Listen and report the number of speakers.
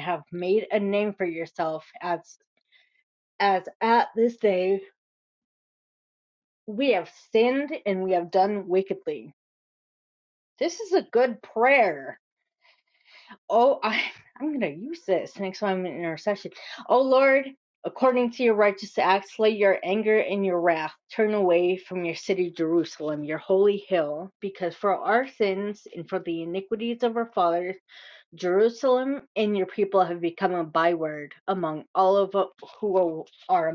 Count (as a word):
one